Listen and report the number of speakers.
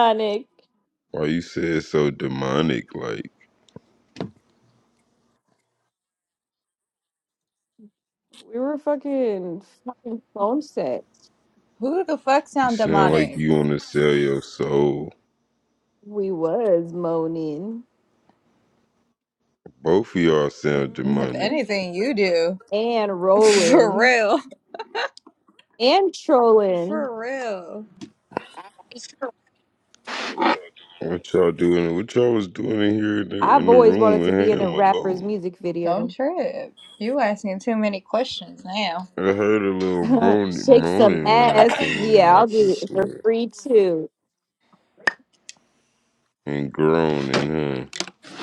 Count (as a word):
three